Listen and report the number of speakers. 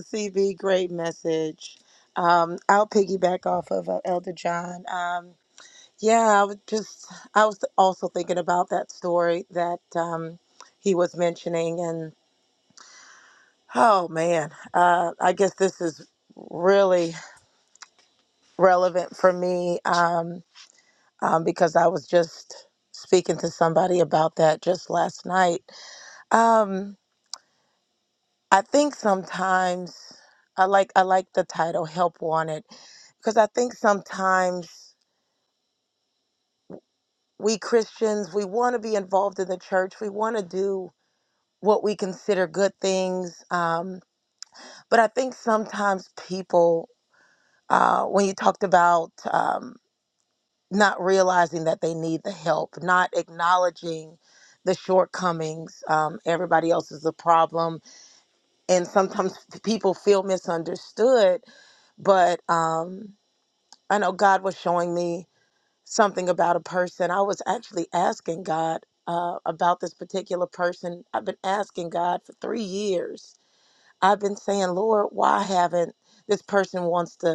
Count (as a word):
one